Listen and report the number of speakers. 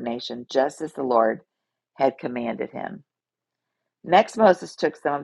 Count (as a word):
one